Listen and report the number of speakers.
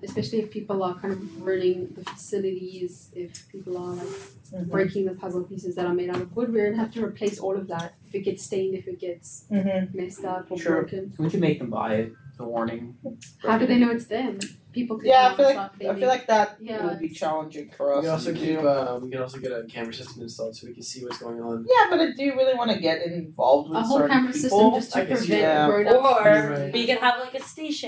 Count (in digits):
5